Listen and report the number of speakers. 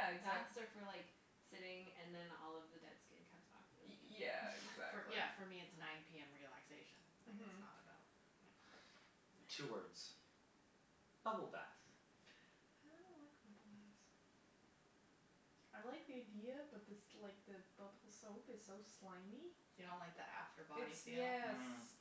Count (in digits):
4